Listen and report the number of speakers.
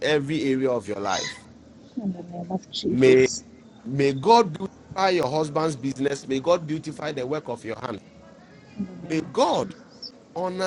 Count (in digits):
2